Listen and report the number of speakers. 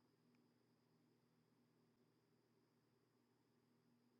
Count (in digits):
0